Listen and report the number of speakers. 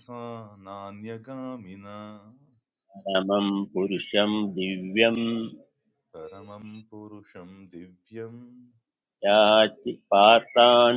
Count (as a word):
two